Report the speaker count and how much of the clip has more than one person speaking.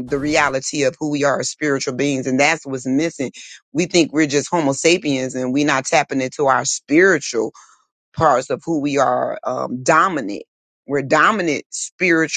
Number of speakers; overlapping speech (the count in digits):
1, no overlap